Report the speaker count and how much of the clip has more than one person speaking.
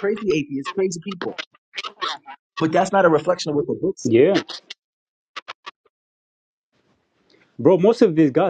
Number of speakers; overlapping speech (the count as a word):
two, about 1%